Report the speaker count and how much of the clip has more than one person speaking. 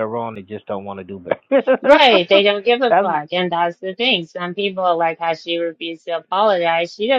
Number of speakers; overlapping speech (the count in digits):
2, about 3%